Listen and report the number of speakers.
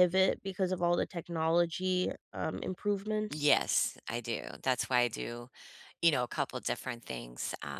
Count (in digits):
2